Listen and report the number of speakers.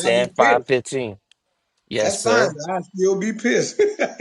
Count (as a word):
two